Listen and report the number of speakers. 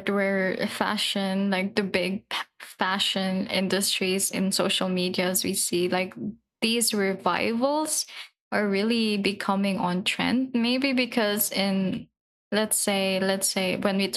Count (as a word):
one